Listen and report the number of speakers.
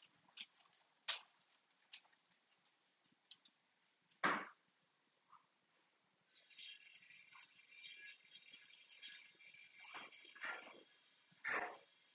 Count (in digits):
0